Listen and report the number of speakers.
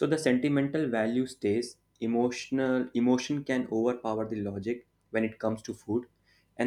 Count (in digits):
1